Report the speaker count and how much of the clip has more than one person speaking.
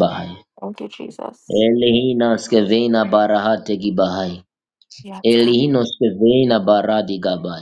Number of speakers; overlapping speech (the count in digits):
2, about 4%